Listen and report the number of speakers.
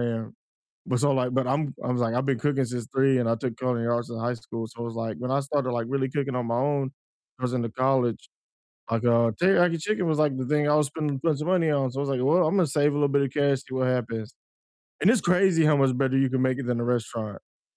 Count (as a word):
one